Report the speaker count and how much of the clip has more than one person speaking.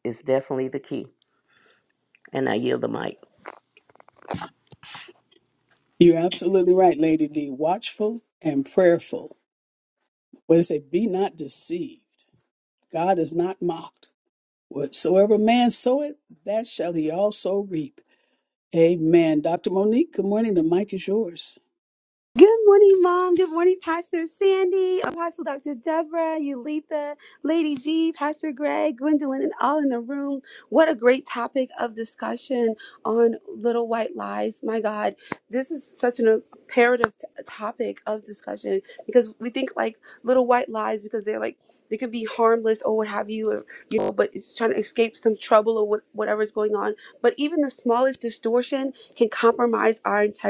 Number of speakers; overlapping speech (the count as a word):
three, no overlap